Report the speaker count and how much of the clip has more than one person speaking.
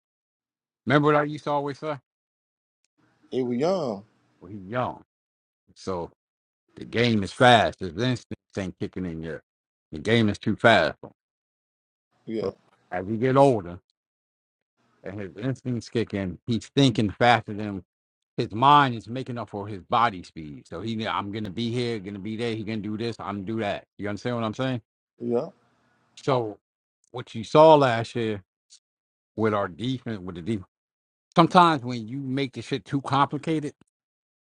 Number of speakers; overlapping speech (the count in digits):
2, under 1%